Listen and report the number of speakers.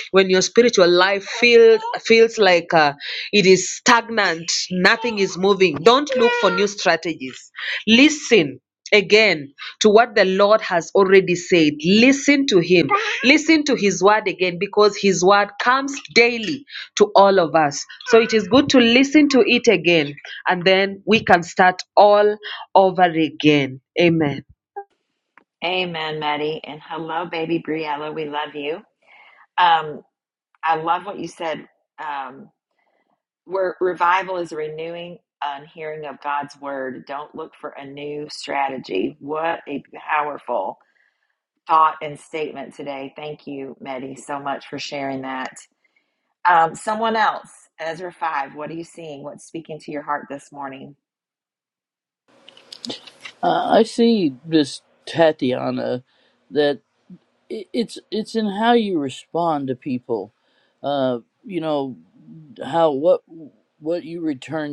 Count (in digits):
3